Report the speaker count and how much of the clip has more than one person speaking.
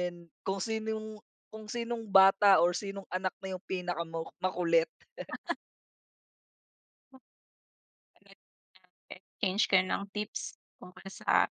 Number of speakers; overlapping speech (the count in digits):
2, no overlap